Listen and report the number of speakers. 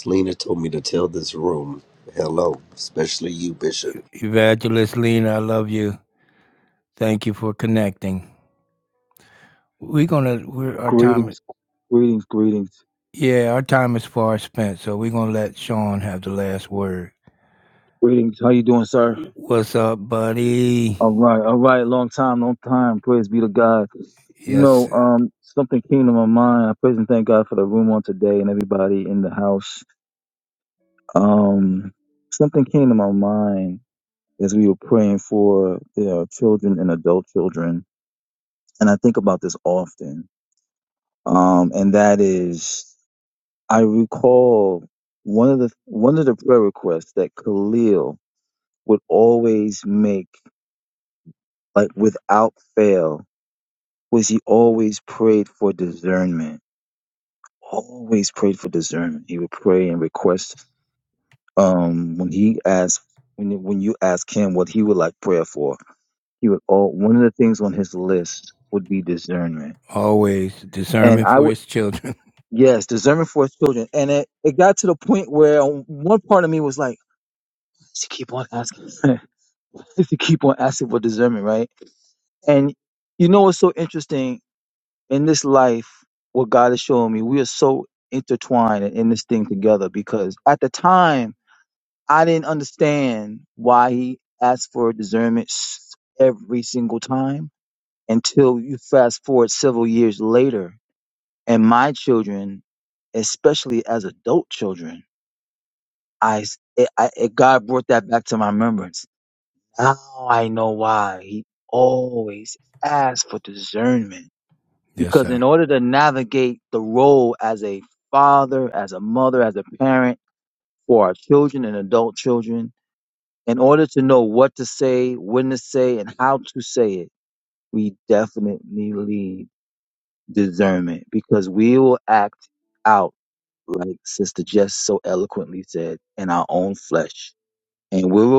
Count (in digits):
3